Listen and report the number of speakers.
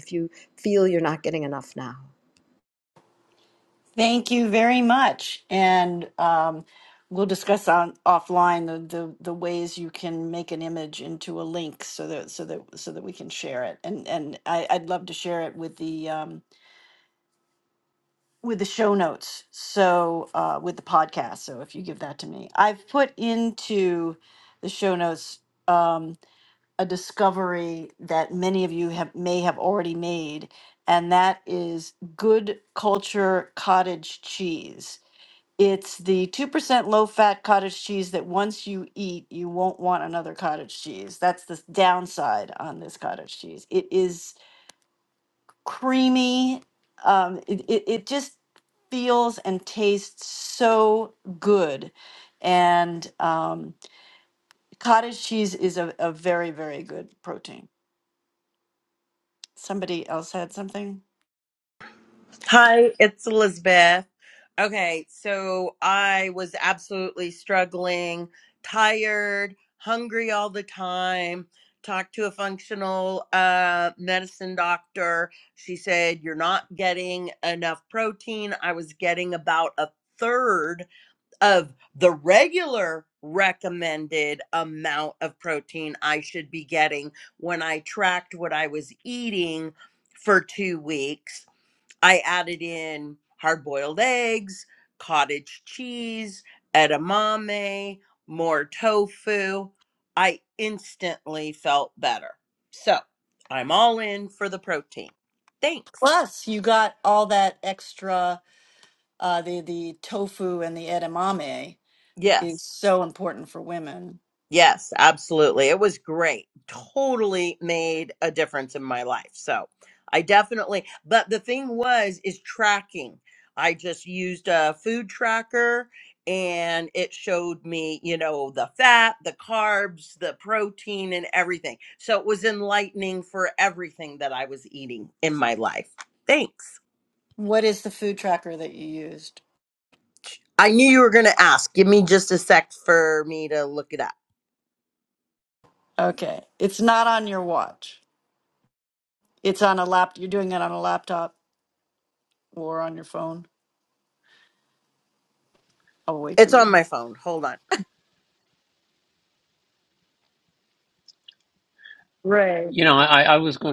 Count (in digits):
4